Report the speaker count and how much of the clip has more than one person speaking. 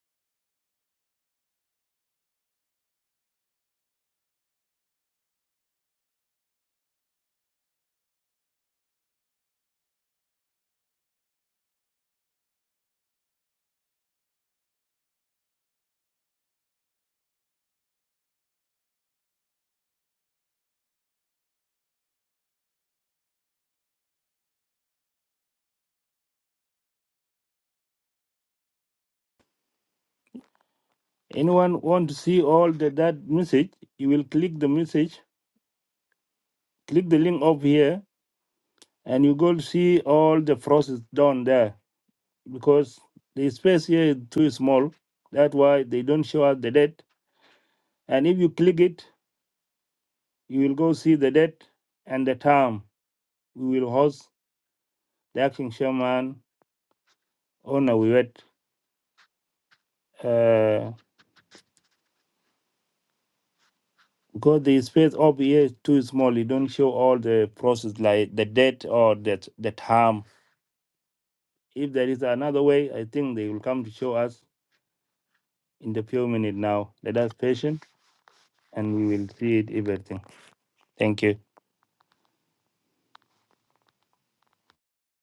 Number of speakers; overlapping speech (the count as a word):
one, no overlap